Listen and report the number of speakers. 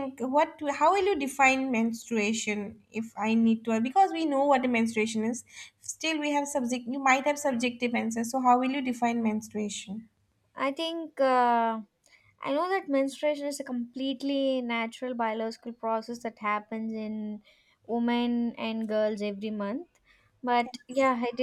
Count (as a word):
two